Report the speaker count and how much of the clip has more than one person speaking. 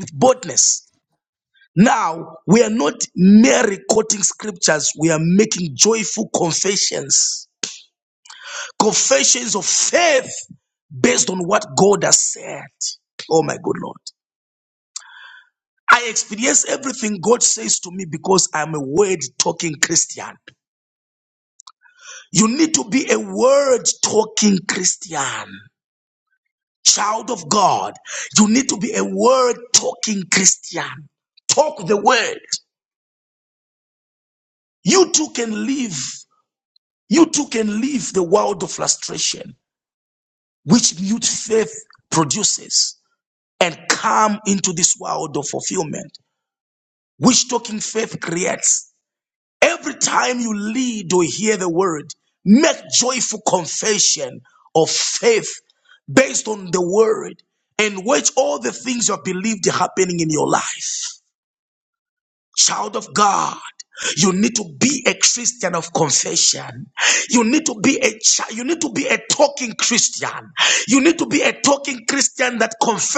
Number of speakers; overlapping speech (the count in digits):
1, no overlap